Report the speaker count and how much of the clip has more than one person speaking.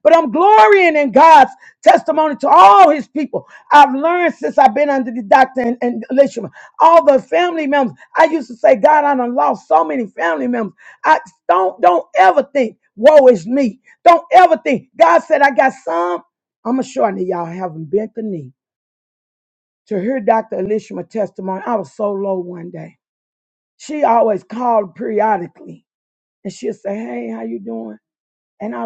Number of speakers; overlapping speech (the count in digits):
1, no overlap